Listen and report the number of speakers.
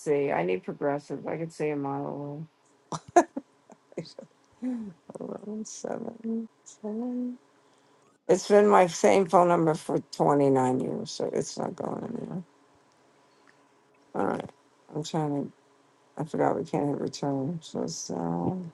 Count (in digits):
1